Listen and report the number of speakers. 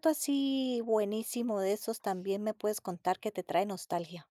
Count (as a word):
one